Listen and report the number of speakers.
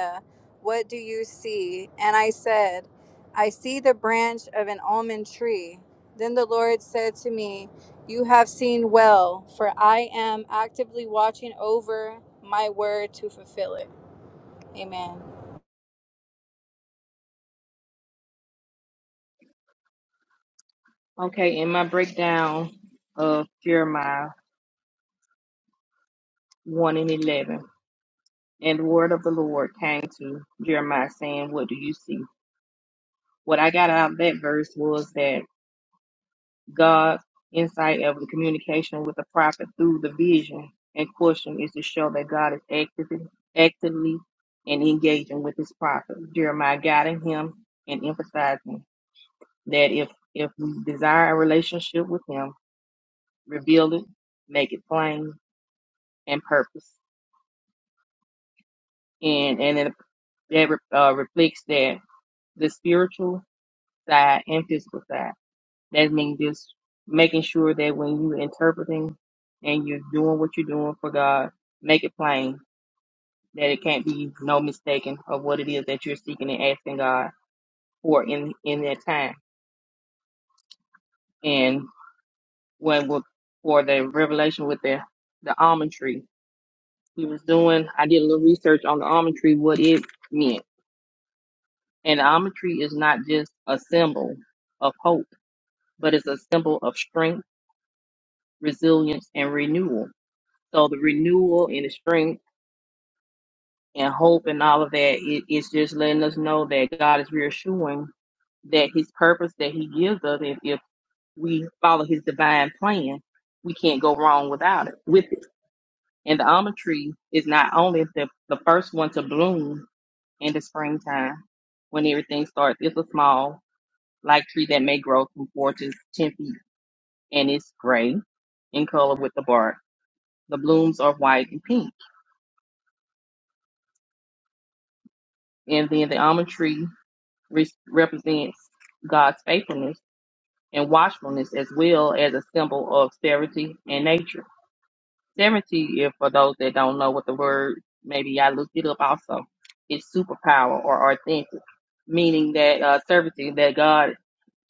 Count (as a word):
two